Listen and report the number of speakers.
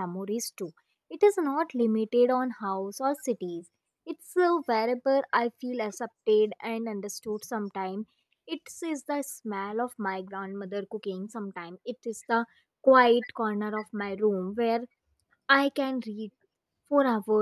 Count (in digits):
1